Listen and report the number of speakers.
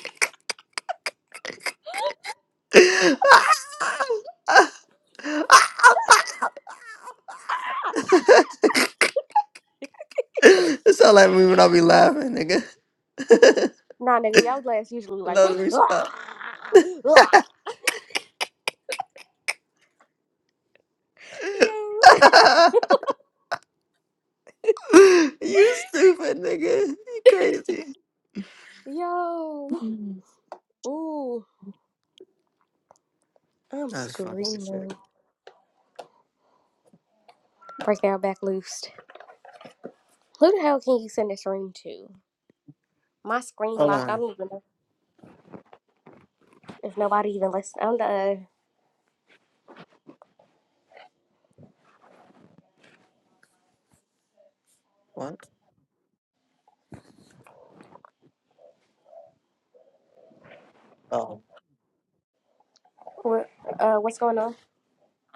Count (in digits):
2